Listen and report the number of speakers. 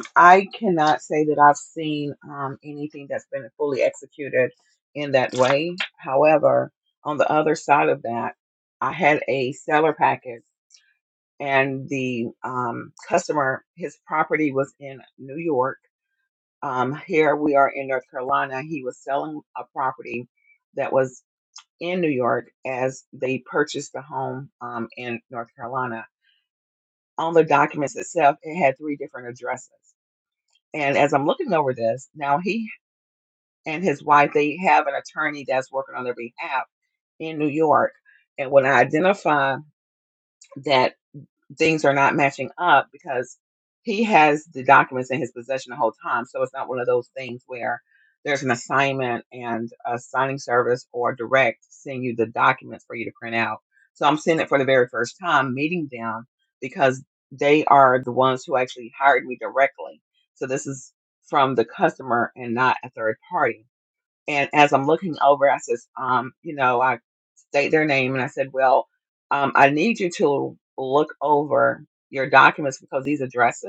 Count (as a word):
one